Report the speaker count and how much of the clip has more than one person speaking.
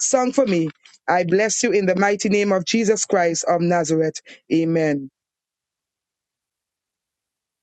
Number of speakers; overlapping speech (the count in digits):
1, no overlap